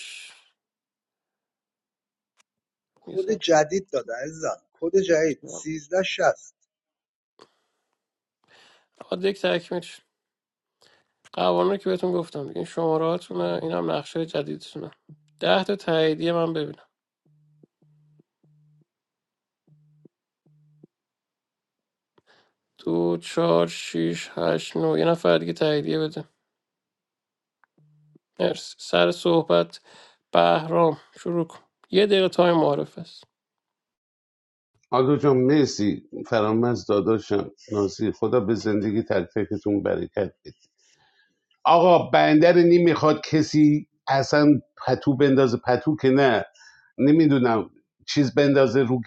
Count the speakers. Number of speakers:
three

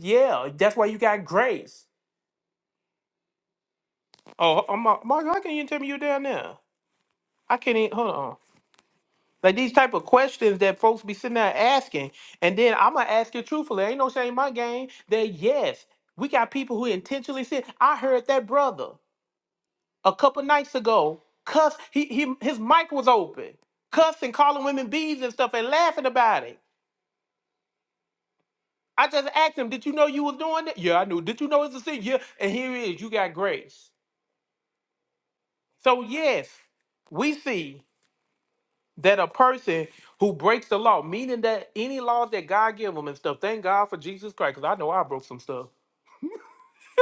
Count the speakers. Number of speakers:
one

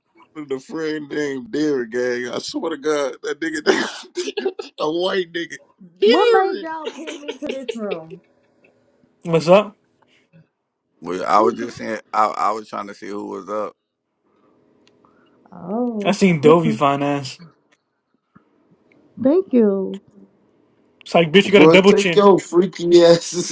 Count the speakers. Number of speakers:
five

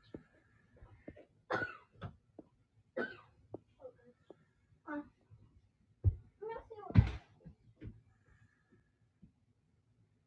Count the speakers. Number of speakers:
zero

